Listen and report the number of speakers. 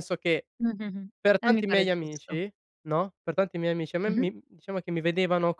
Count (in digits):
2